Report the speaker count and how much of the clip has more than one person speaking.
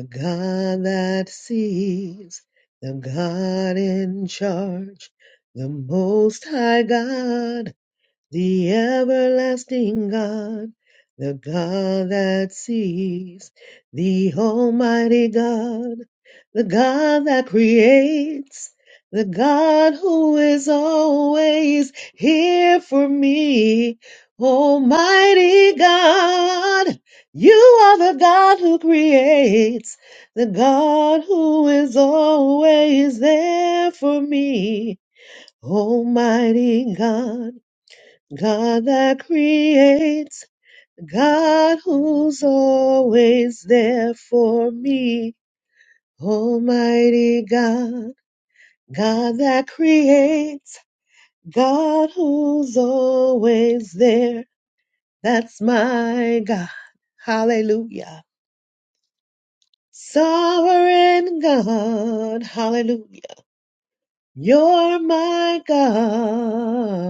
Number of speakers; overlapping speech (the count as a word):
one, no overlap